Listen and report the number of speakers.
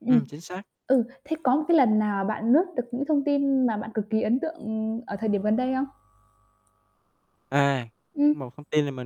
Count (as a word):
two